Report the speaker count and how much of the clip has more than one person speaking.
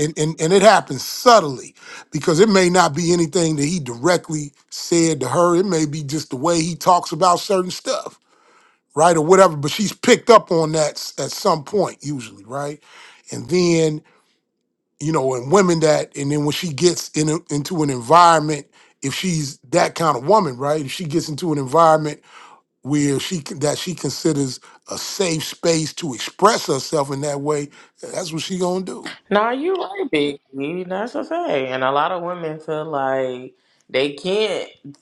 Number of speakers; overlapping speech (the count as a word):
two, no overlap